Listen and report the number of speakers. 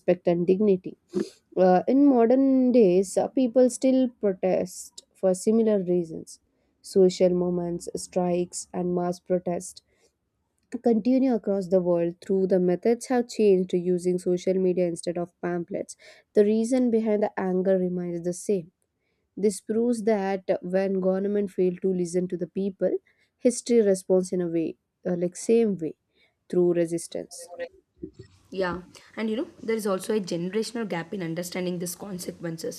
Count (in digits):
2